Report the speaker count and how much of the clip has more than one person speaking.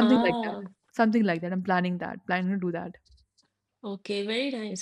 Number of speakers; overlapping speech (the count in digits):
2, about 12%